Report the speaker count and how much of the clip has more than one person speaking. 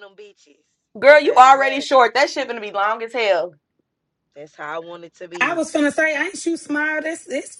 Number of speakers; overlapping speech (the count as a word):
three, about 13%